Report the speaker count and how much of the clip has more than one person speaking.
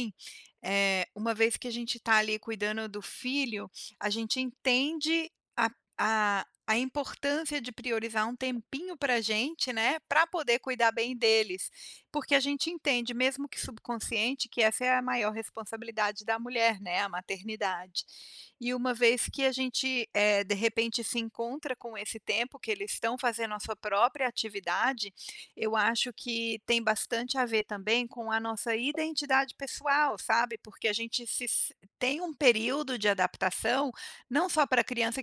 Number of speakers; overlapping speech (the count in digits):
1, no overlap